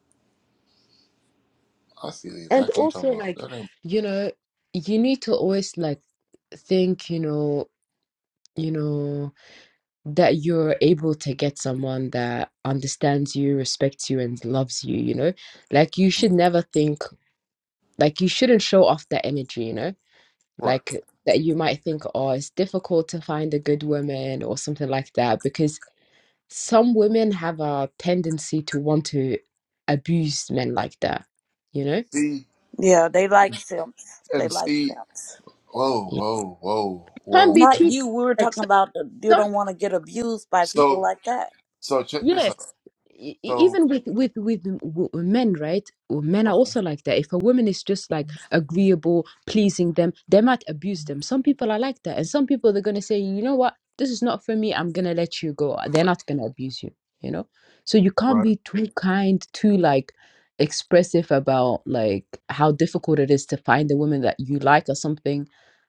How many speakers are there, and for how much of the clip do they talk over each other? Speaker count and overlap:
3, about 7%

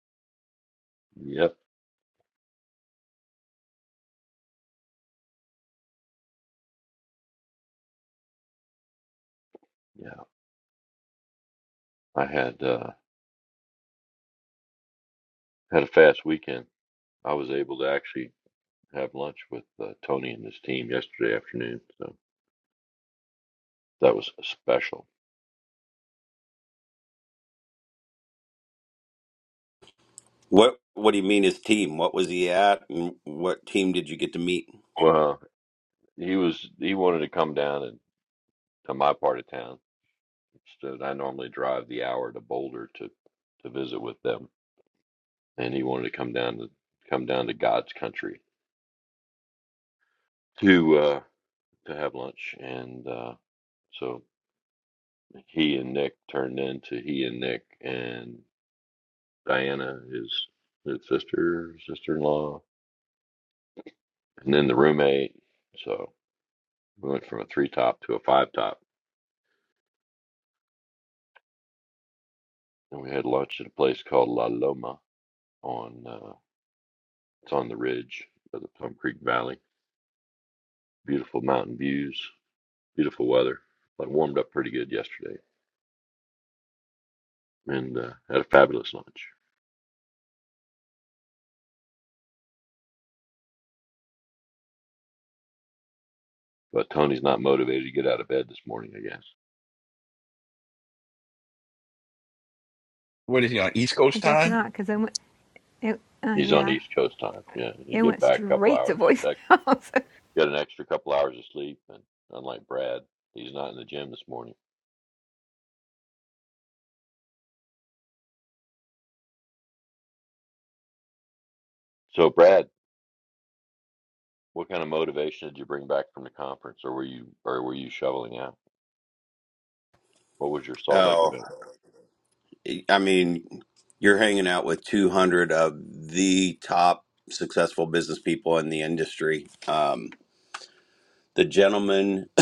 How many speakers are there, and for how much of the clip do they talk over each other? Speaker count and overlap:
4, about 2%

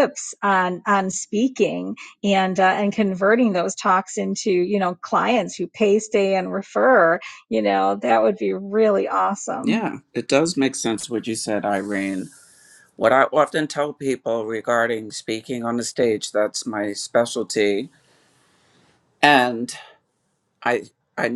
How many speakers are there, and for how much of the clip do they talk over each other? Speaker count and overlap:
2, about 1%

